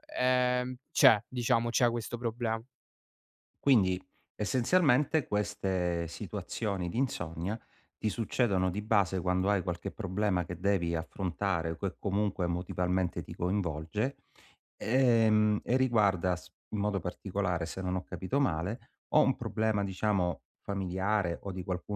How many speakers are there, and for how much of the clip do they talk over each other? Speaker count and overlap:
2, no overlap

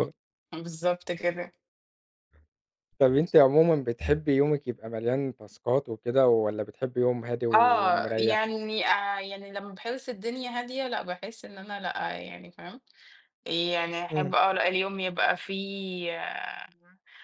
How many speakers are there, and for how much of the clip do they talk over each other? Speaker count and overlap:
2, about 6%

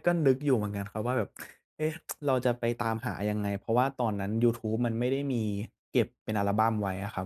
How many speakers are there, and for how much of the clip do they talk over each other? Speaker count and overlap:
1, no overlap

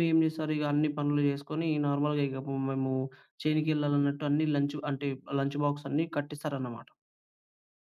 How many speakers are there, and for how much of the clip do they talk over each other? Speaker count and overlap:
1, no overlap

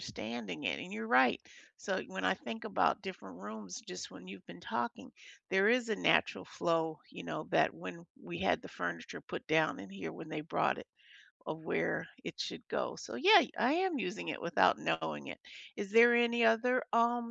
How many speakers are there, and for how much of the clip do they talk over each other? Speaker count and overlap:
1, no overlap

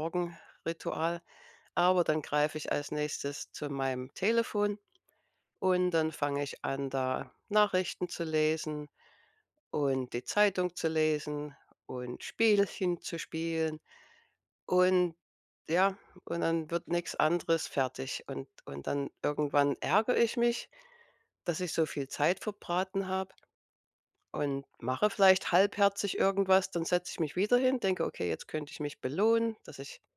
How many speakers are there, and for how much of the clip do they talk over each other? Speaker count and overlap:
1, no overlap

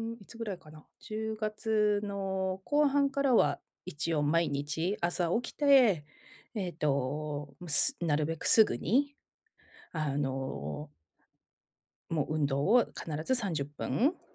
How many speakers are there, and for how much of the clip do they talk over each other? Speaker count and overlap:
1, no overlap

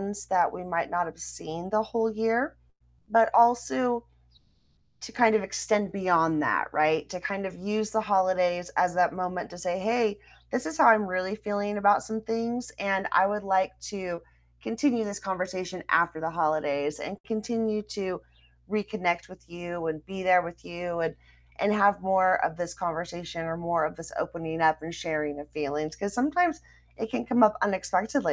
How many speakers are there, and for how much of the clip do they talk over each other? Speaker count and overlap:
1, no overlap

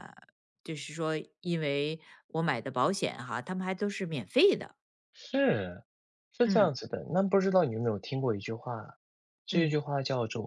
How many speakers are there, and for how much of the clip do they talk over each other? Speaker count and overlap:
2, about 4%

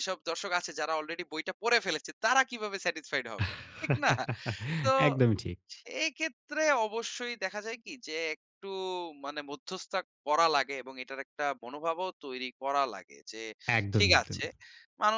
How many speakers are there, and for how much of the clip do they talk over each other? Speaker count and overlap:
2, about 3%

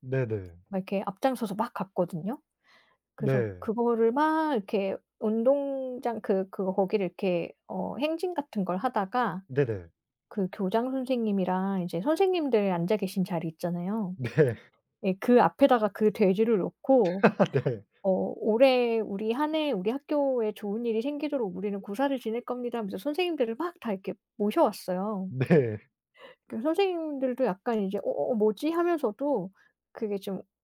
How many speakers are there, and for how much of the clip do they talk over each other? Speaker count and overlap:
2, about 1%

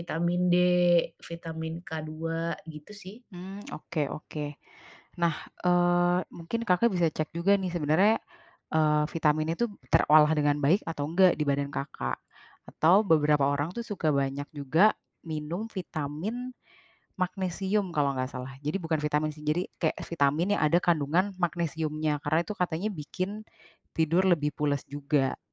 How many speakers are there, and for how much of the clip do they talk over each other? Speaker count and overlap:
2, no overlap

